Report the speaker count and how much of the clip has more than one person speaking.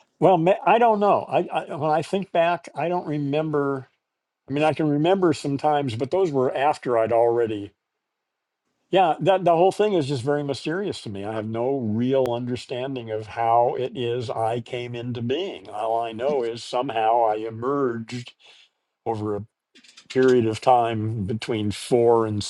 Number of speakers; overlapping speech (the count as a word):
one, no overlap